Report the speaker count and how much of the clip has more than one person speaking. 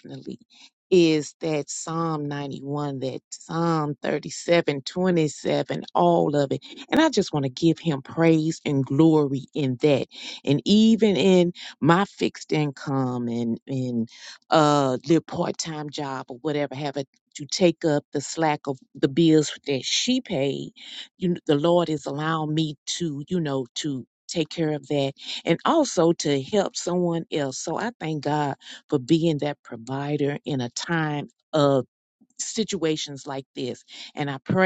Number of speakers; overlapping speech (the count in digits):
1, no overlap